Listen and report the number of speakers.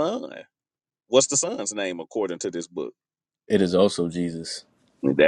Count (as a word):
two